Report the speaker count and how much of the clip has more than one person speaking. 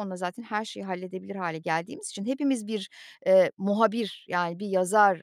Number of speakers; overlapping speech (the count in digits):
1, no overlap